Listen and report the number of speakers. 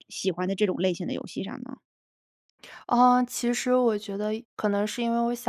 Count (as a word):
two